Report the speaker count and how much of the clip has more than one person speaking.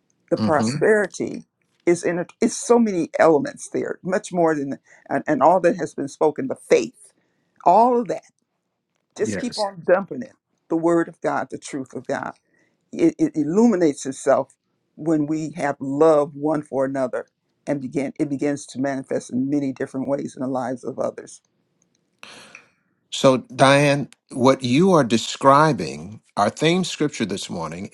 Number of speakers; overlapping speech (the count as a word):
two, about 3%